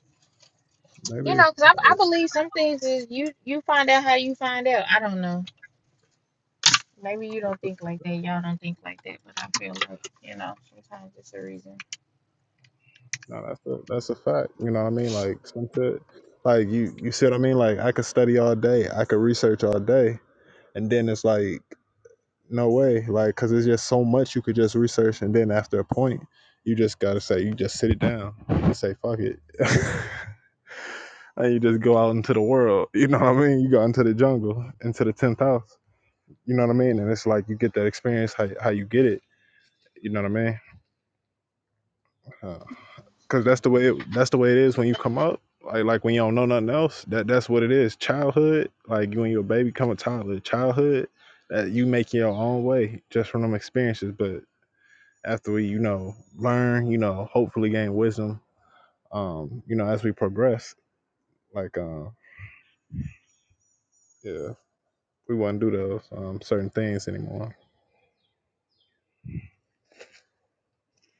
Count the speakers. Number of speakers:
2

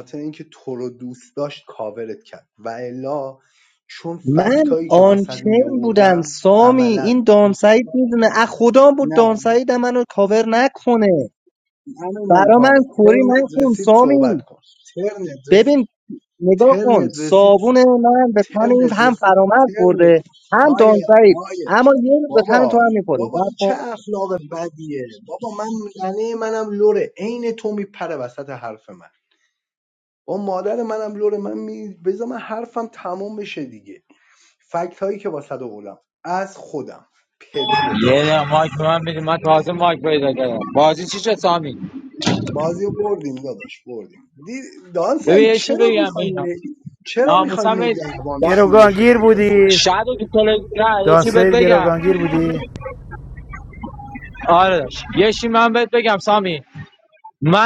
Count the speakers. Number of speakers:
4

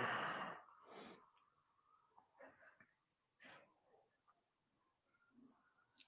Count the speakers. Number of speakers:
0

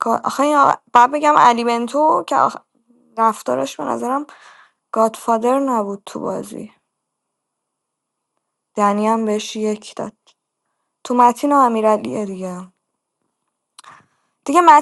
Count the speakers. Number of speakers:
1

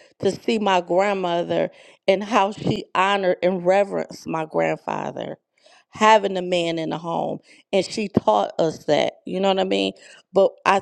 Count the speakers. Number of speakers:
1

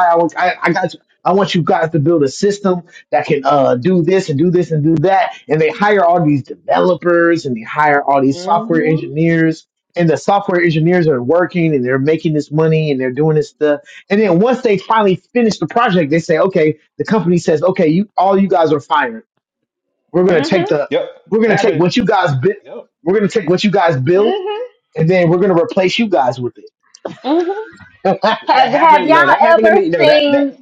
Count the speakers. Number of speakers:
3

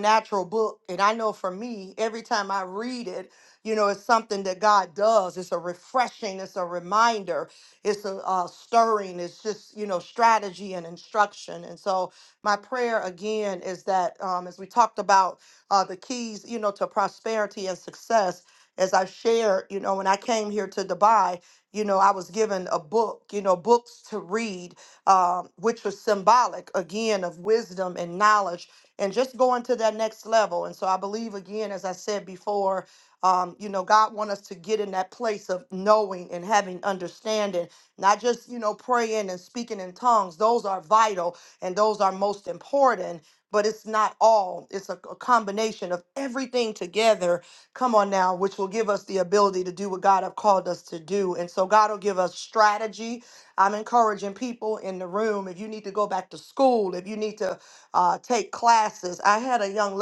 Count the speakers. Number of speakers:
1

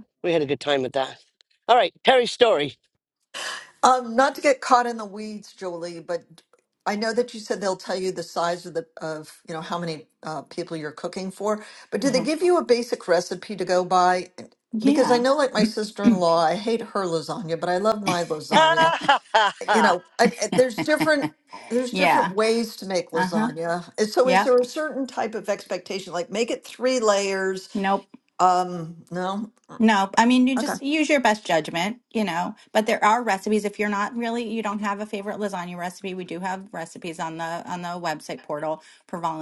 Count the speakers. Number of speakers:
3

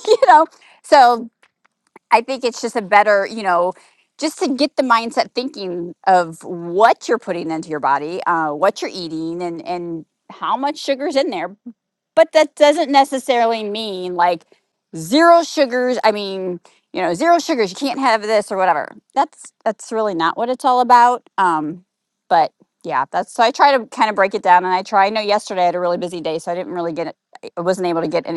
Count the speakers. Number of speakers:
1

